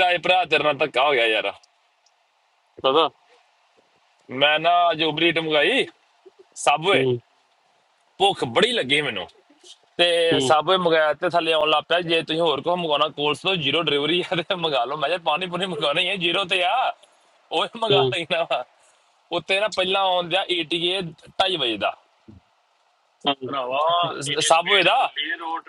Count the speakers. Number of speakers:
3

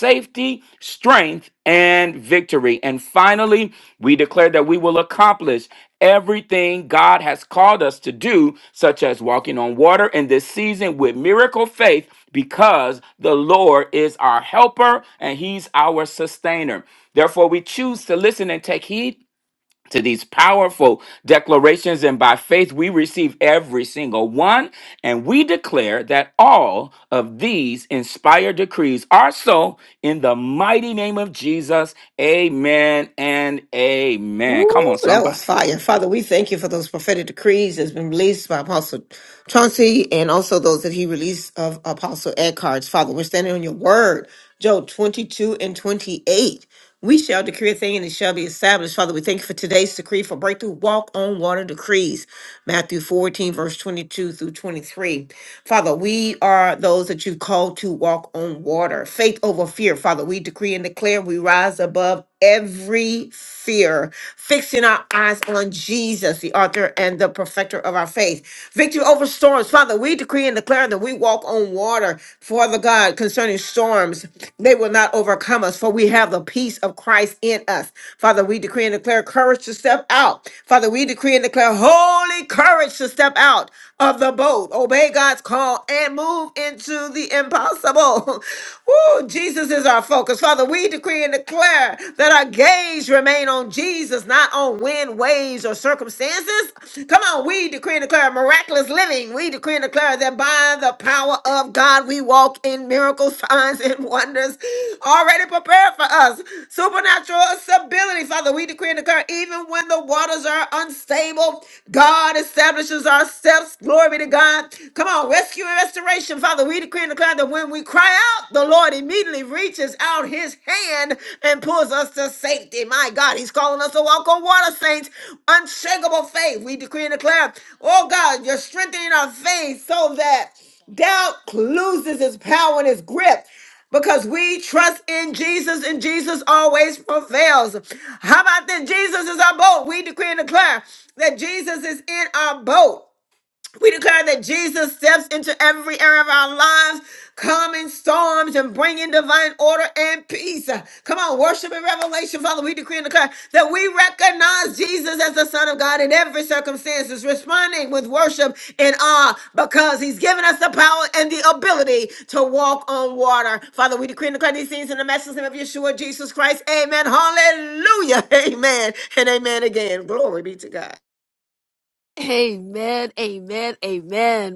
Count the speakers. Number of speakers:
3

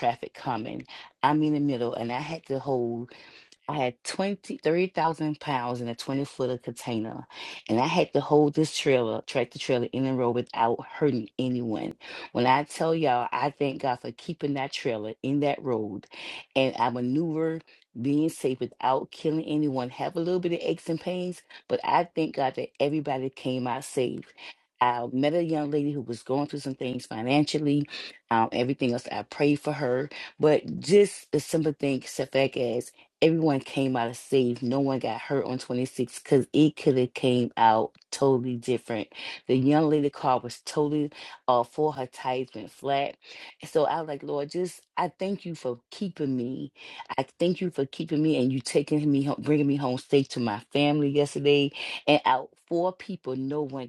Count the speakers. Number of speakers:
1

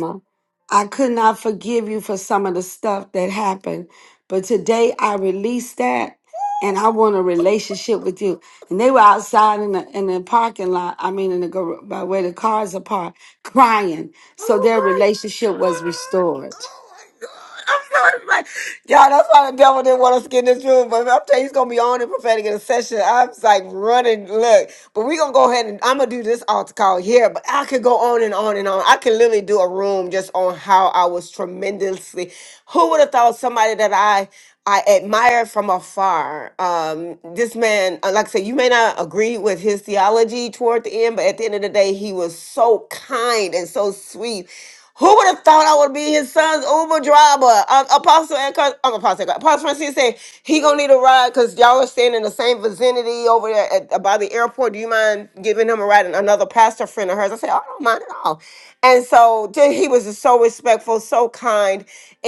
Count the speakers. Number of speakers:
2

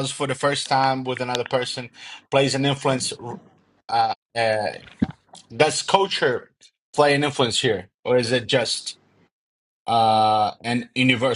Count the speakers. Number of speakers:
1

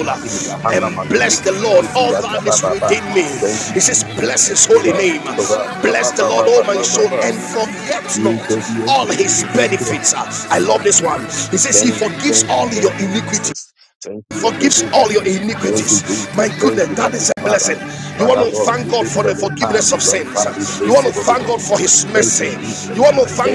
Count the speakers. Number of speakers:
2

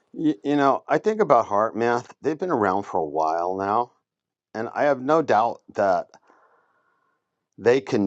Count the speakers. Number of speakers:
1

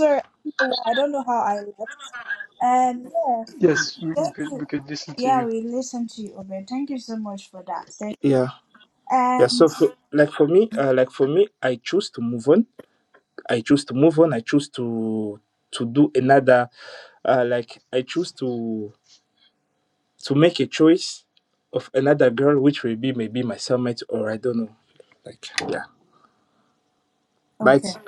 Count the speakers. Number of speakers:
3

